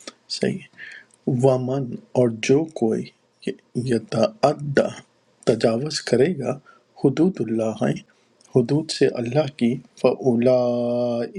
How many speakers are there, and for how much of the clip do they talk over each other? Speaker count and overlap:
one, no overlap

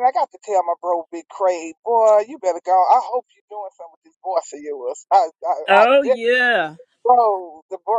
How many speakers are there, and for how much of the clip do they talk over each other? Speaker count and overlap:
two, about 6%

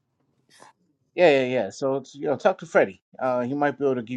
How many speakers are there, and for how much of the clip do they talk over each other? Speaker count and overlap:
one, no overlap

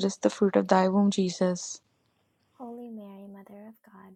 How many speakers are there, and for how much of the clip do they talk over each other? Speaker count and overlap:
two, no overlap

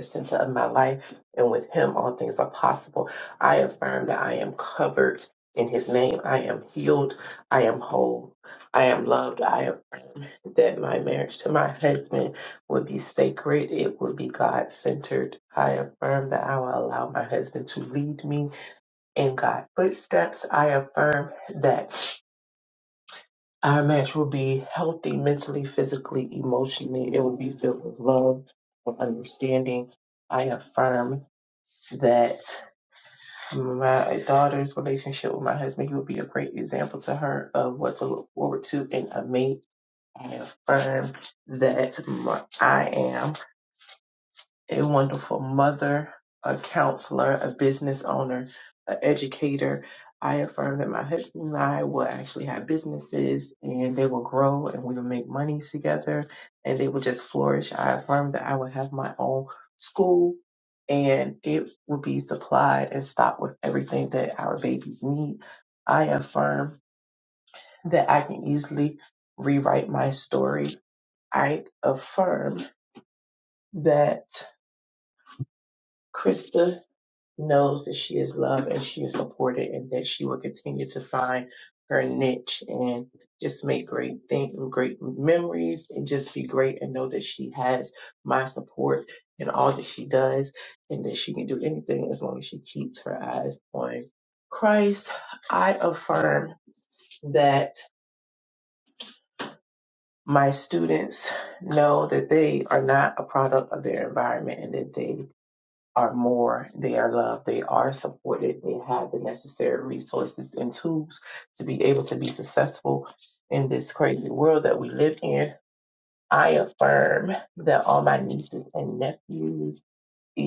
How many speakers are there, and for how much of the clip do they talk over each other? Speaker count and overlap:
one, no overlap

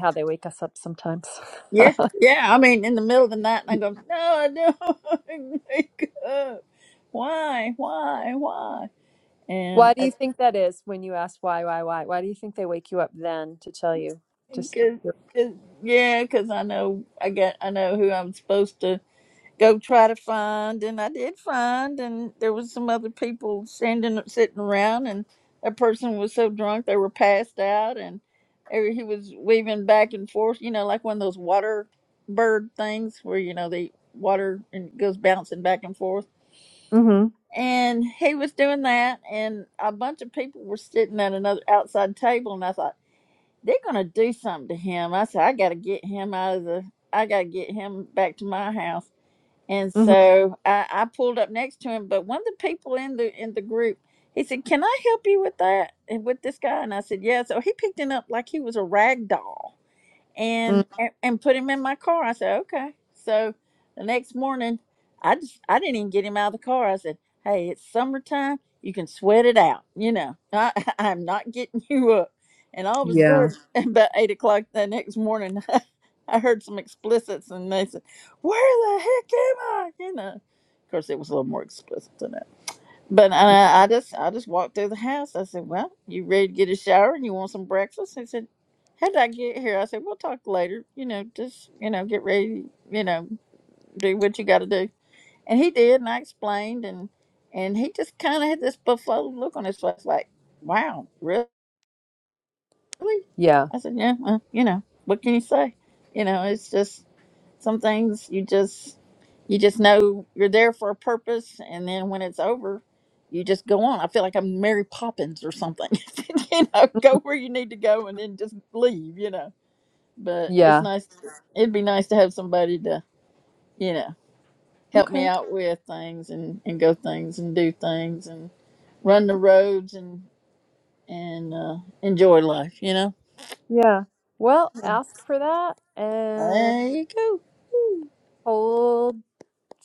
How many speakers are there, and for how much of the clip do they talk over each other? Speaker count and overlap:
two, about 2%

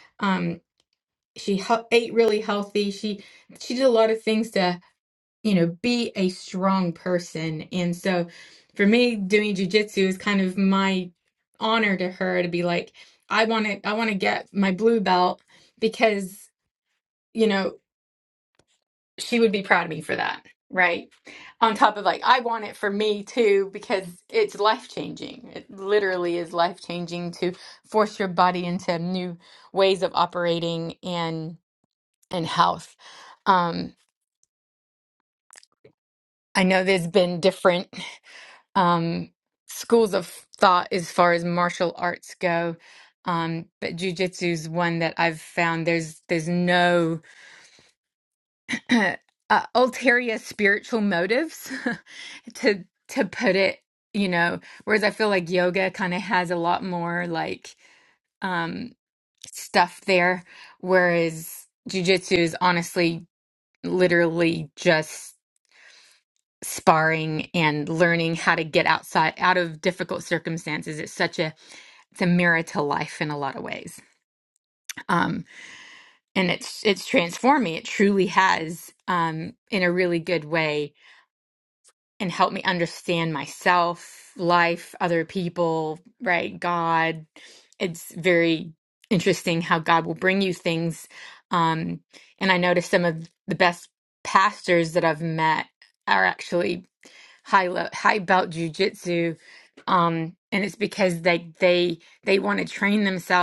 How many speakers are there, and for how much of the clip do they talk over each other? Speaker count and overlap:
one, no overlap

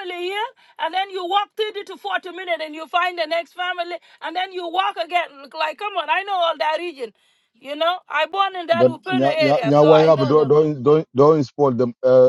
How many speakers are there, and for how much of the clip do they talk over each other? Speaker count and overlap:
two, about 15%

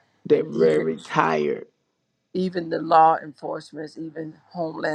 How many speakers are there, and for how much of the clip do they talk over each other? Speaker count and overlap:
two, about 14%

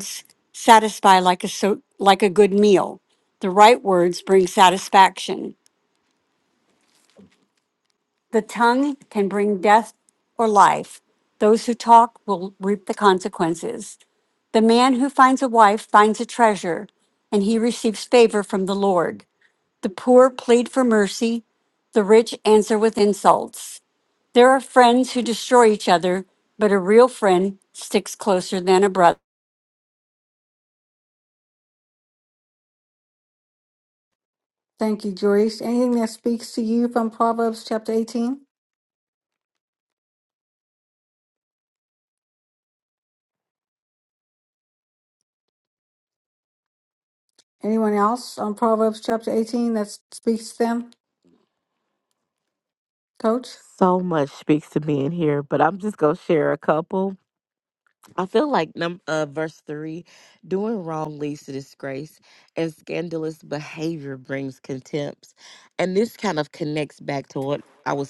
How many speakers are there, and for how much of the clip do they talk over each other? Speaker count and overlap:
three, no overlap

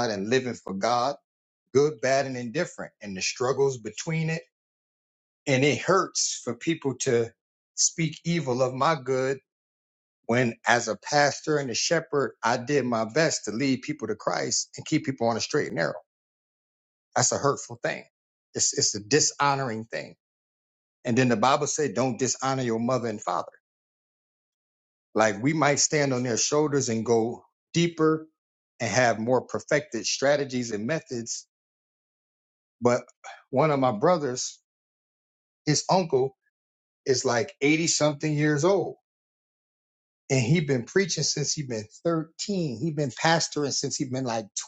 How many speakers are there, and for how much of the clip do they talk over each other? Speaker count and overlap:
one, no overlap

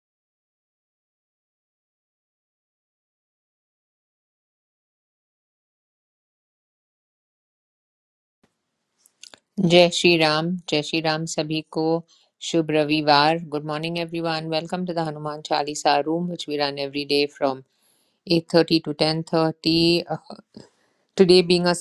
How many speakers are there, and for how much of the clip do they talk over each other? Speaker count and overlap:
one, no overlap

